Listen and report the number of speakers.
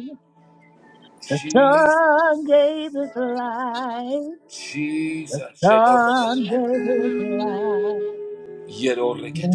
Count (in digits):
2